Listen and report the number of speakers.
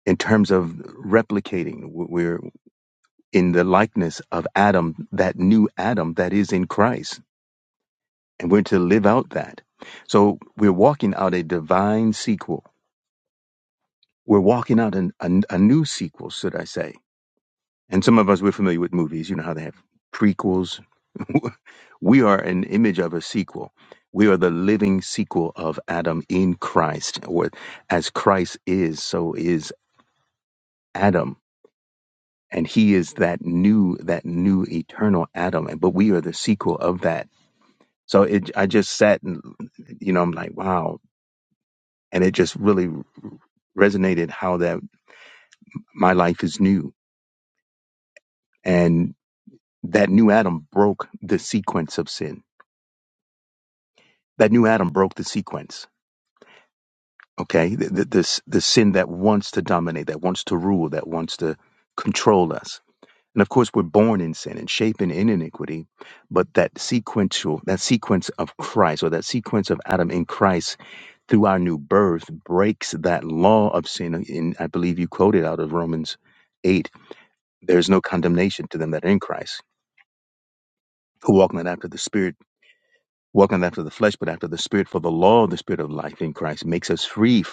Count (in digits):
1